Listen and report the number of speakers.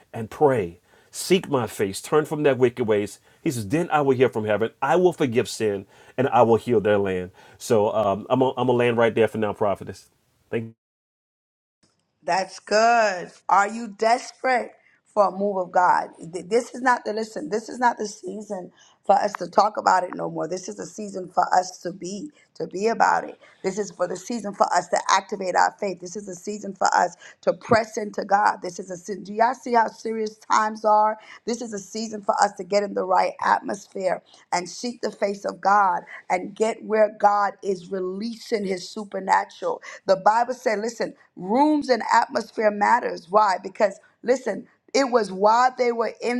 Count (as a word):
two